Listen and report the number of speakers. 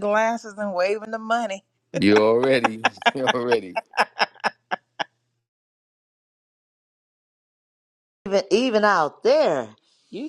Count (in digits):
3